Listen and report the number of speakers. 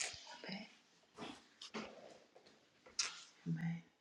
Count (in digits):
0